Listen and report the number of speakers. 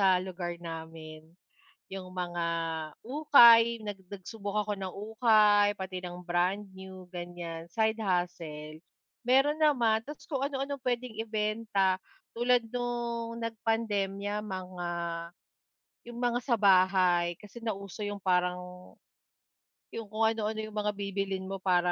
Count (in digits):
1